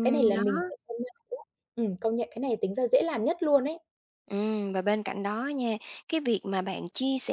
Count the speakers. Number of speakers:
two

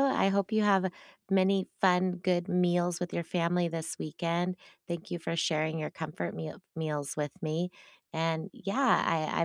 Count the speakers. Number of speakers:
one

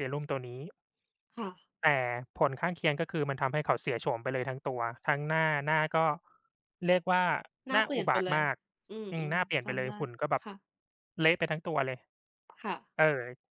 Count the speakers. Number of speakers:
two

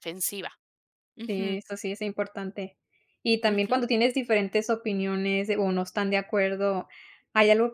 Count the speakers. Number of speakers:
two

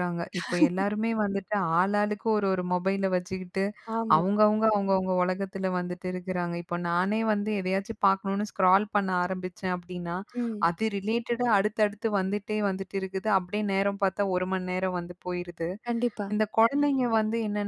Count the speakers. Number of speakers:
two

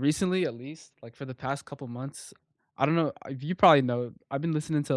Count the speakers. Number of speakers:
one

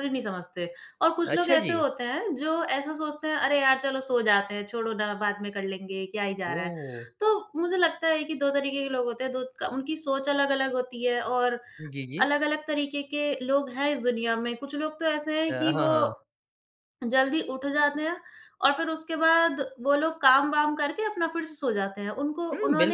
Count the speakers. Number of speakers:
two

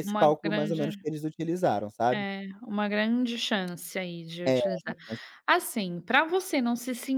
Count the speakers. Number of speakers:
two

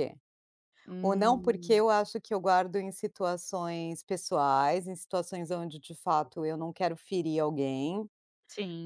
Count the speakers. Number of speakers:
two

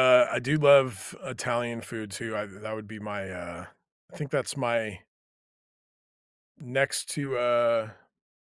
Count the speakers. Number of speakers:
one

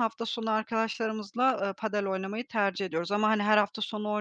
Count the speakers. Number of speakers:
one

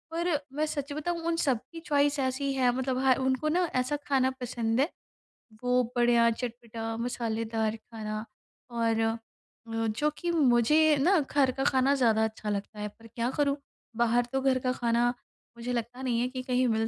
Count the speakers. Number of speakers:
one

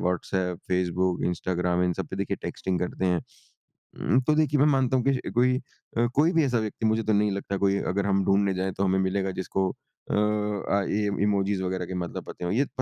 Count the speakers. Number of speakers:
one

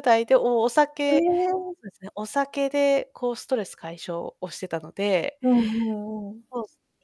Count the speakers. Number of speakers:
two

